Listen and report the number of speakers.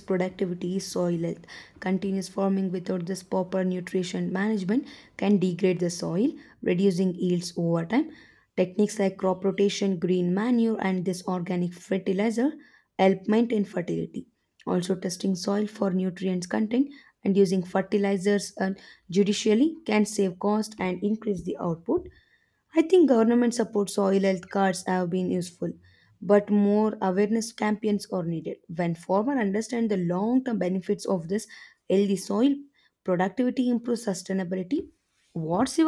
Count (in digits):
1